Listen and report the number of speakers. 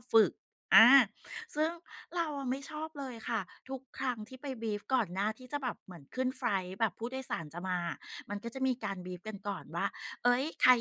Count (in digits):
1